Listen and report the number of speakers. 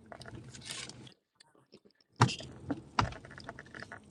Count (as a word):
zero